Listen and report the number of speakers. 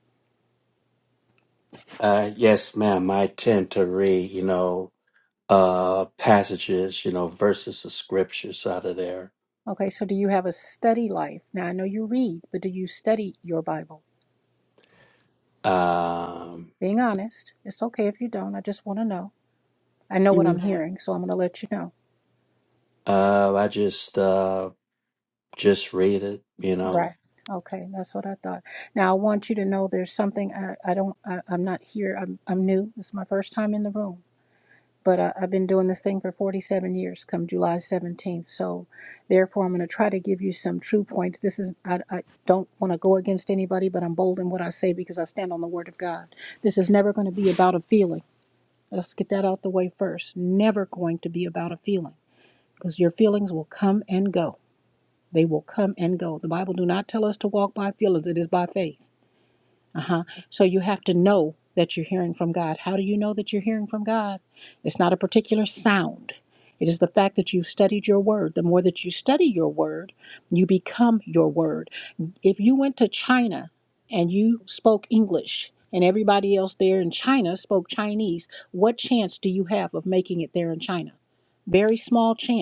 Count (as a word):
two